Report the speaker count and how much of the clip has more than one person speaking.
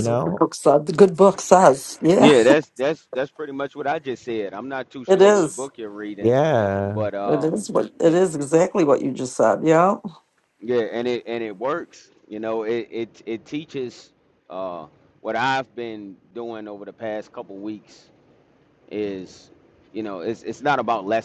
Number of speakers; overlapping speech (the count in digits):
3, about 10%